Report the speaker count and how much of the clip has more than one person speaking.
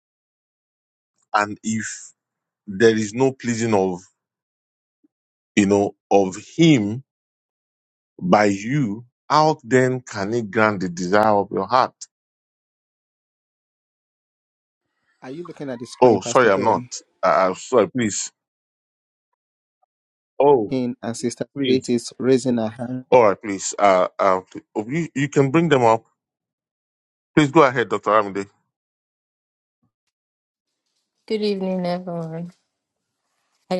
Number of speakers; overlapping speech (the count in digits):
3, about 3%